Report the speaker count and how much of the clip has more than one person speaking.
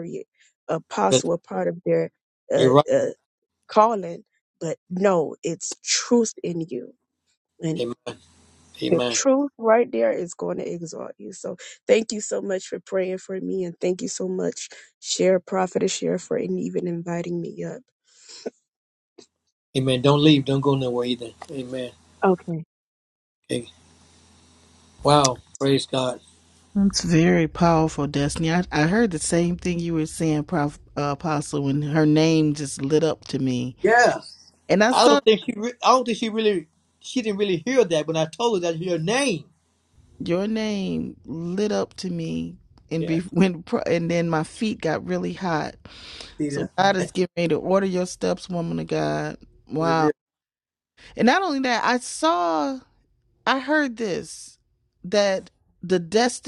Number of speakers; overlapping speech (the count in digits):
3, about 3%